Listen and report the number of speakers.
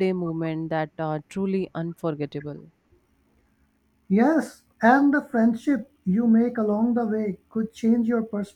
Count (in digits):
2